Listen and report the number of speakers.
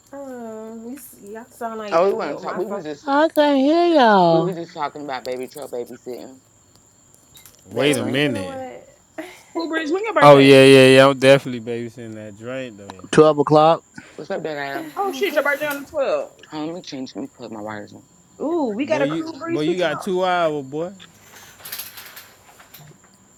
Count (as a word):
five